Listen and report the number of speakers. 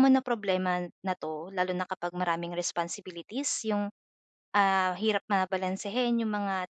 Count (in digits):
1